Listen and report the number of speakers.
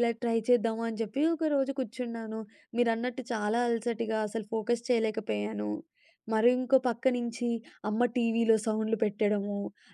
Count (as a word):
one